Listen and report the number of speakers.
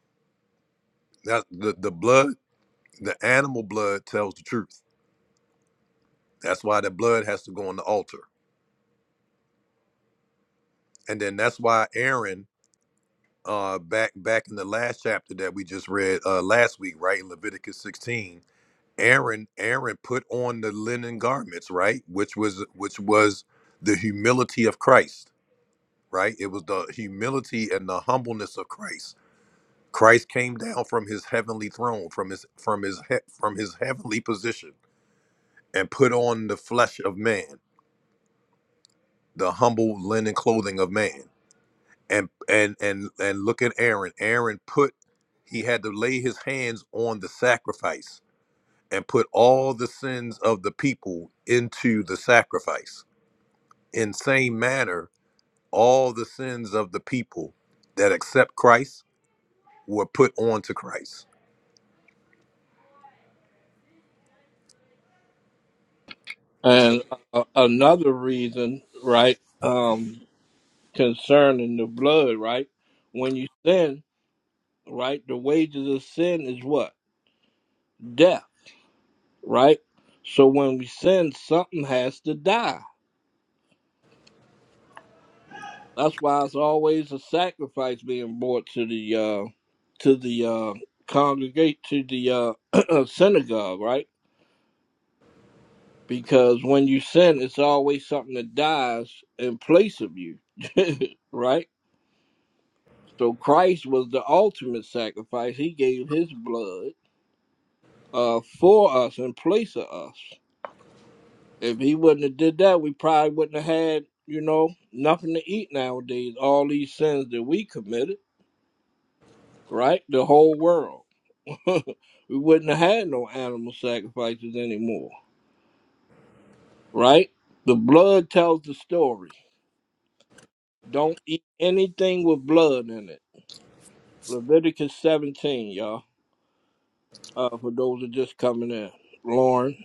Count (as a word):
two